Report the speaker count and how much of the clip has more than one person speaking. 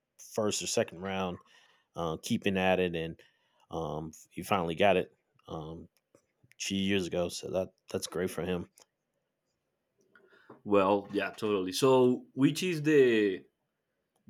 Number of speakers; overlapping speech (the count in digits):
2, no overlap